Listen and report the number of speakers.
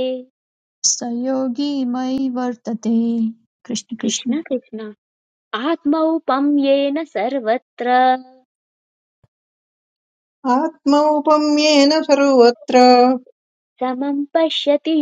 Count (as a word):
three